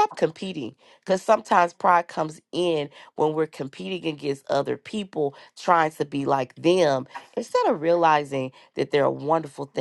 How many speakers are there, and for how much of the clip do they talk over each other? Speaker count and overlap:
1, no overlap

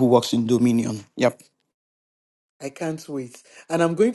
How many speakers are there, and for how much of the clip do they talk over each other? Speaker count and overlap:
2, no overlap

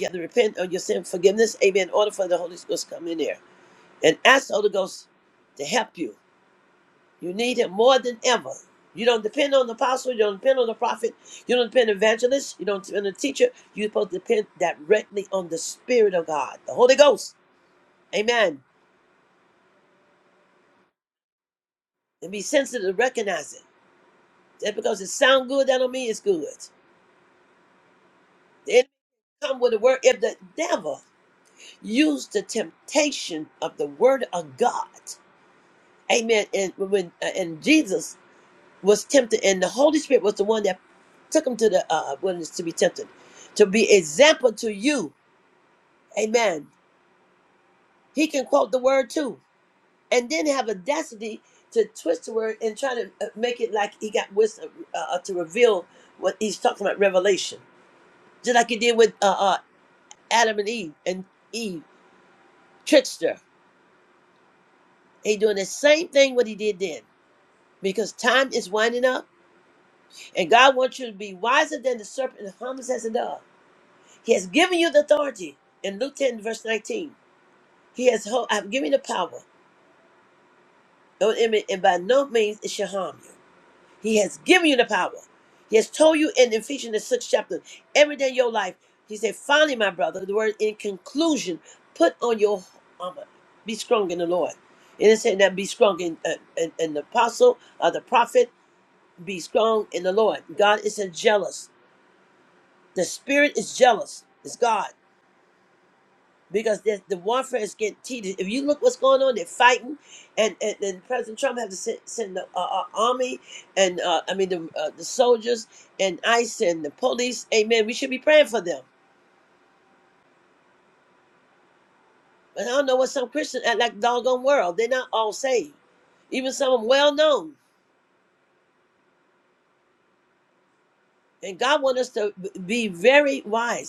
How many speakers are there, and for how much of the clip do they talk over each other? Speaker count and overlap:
1, no overlap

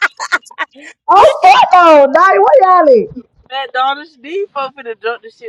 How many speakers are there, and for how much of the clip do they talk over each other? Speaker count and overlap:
2, about 4%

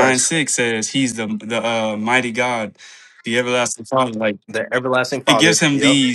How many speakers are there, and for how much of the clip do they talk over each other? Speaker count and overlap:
2, about 16%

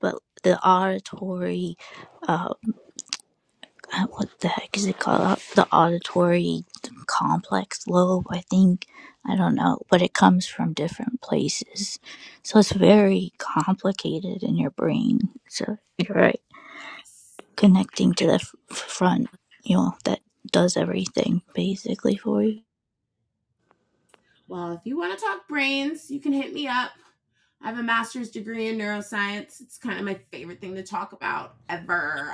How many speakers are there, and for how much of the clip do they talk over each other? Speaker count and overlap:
2, no overlap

